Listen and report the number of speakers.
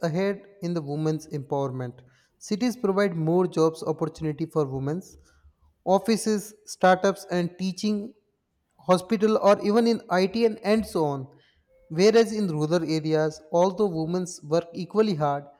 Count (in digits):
1